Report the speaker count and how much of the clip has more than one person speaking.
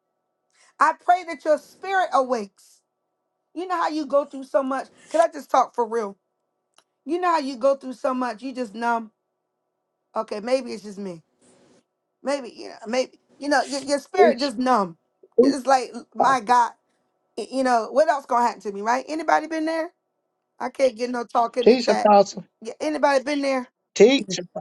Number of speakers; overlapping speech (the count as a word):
two, about 4%